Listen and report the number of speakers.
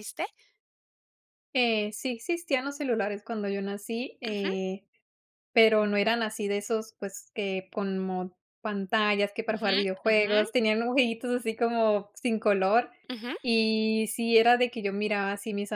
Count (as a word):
two